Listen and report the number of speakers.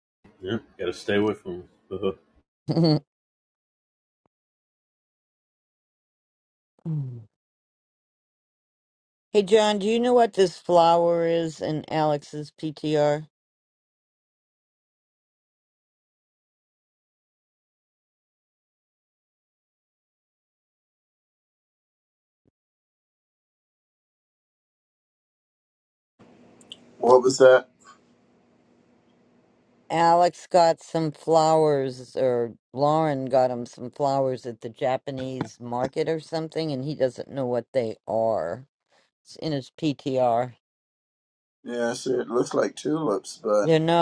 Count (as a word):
three